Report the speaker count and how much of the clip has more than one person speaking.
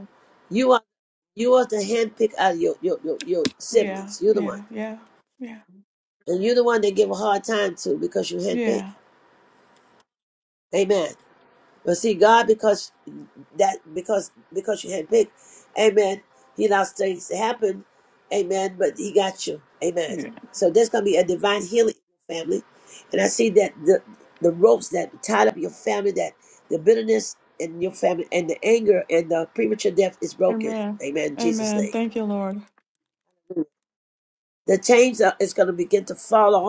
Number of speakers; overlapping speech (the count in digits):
2, about 6%